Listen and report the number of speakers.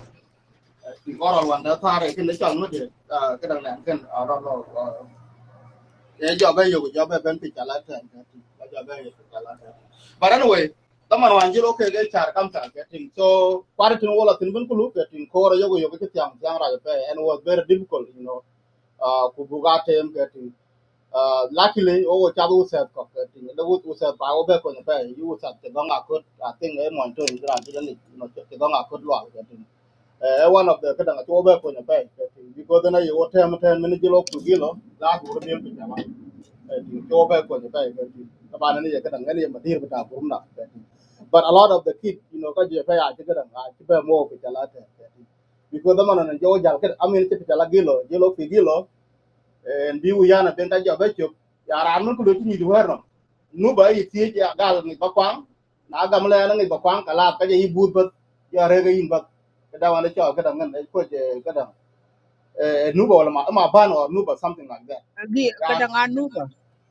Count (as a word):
two